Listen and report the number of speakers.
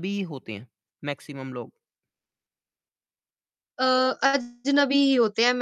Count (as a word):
two